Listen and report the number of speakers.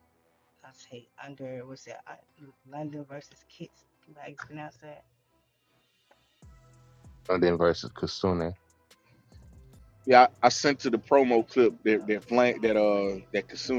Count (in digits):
3